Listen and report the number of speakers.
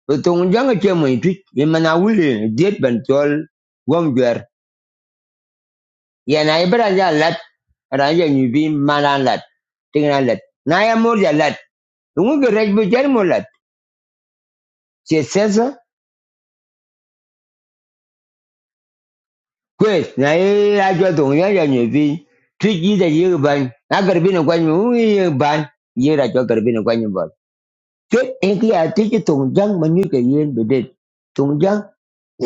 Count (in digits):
1